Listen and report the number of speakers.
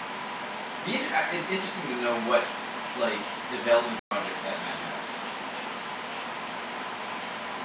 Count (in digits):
1